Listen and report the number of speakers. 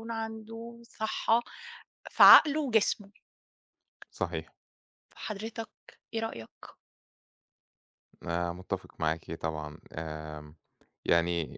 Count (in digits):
2